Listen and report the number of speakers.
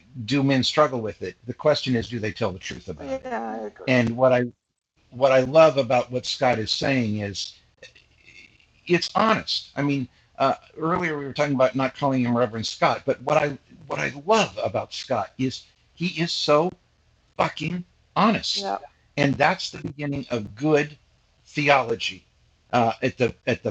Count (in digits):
2